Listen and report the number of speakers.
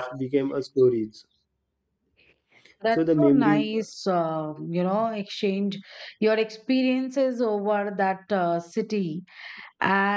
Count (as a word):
two